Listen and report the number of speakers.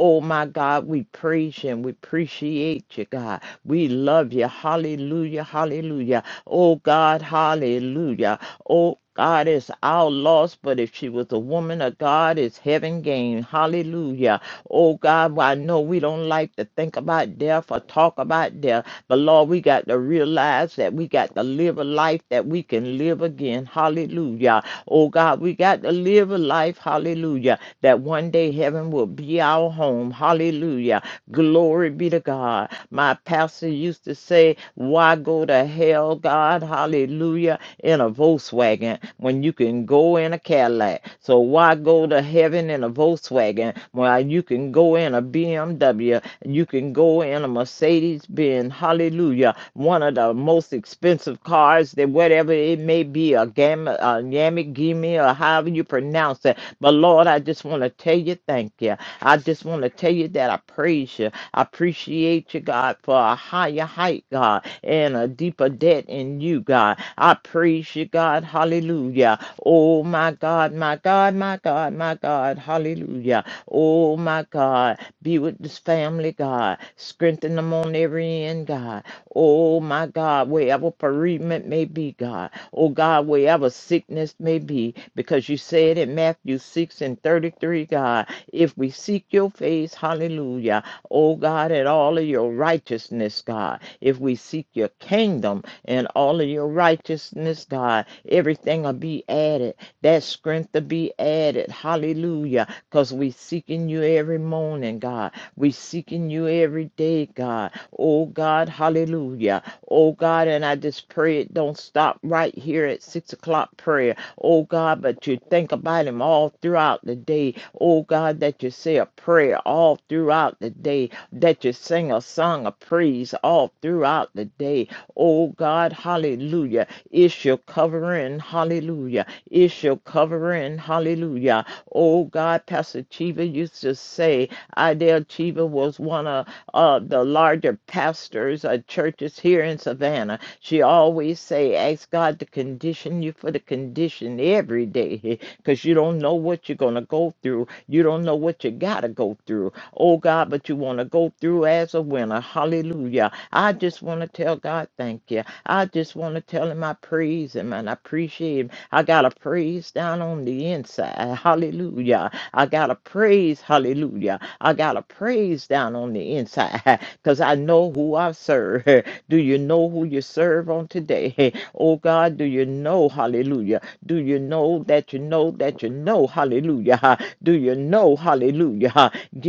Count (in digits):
1